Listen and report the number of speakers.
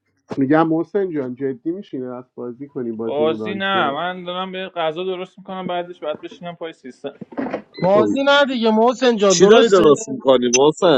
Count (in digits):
4